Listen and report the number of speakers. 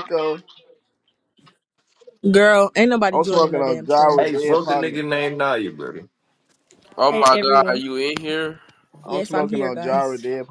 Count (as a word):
four